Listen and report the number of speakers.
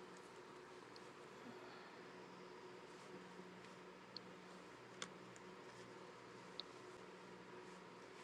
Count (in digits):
0